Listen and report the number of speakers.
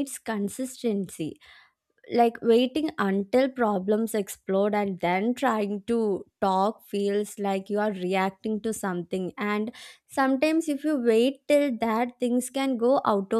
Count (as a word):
one